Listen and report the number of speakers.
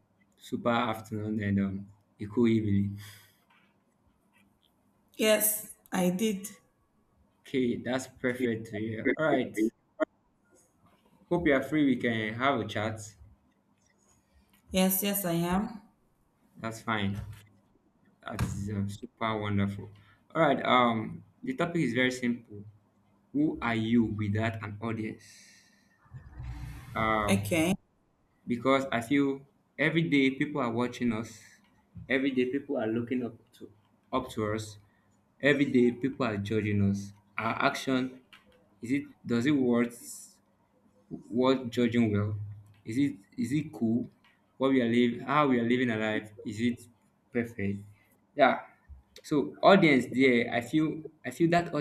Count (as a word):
two